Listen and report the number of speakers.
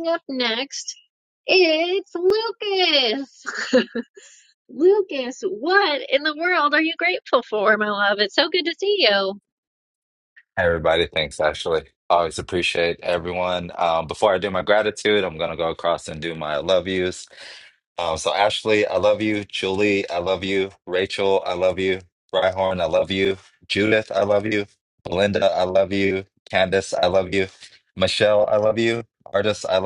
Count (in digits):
2